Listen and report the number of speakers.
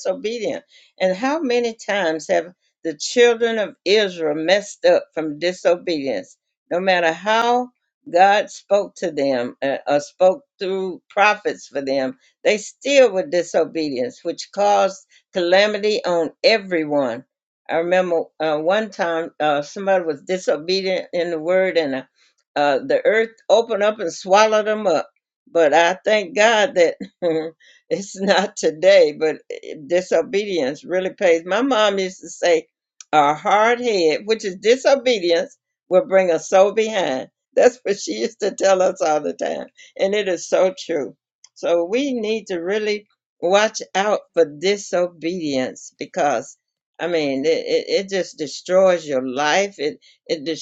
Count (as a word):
one